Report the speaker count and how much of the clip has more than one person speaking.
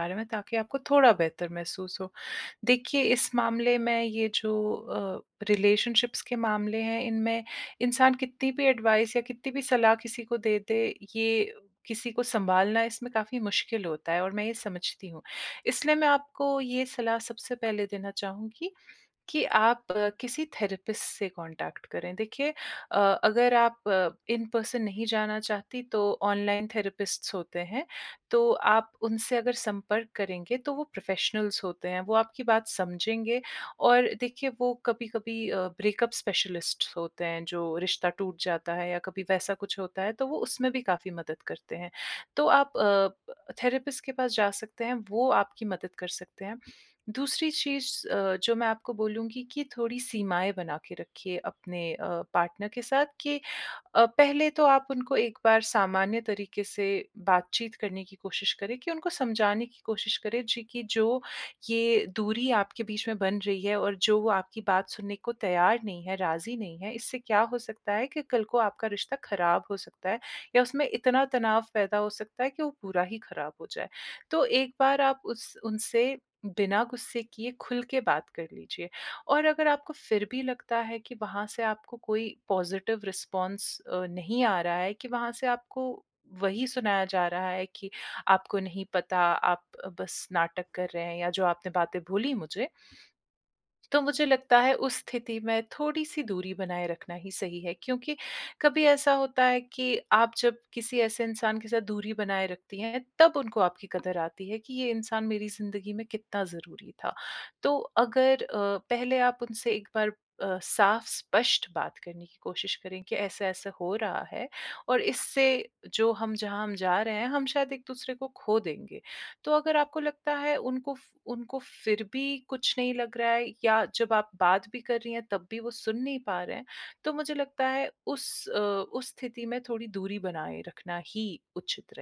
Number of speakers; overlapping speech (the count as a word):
one, no overlap